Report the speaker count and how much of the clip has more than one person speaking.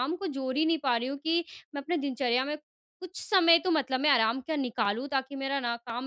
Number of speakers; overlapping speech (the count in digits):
1, no overlap